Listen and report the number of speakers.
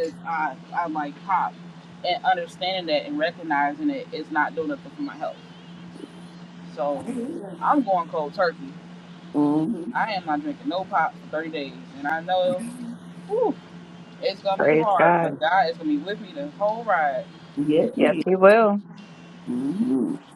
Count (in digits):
3